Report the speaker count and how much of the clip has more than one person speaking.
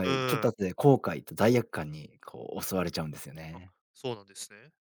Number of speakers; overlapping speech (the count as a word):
two, about 11%